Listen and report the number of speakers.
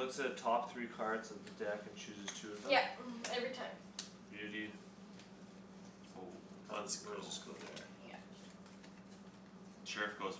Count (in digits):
3